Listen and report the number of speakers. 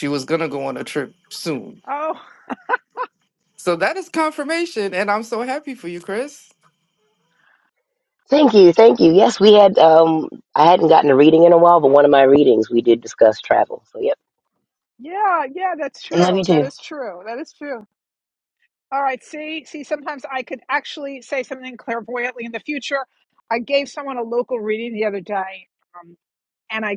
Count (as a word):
three